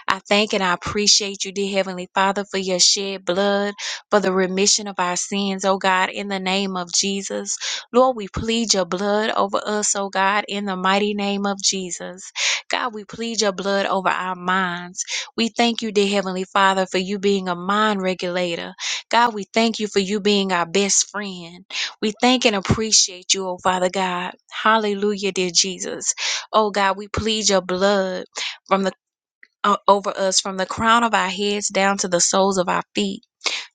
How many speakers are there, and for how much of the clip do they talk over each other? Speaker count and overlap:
1, no overlap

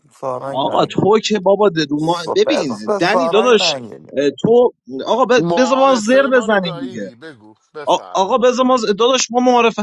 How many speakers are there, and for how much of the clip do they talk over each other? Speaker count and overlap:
3, about 43%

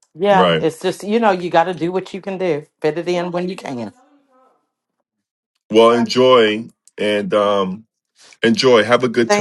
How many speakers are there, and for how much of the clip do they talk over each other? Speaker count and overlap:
2, about 5%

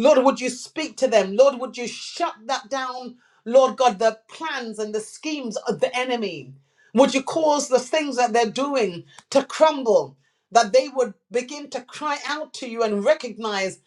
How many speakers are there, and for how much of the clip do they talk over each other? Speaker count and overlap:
1, no overlap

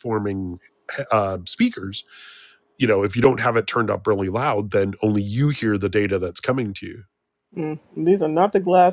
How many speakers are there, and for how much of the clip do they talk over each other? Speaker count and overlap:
2, no overlap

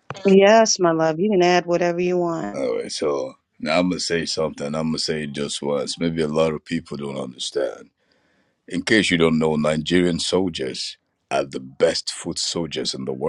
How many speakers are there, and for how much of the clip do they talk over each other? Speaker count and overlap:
2, under 1%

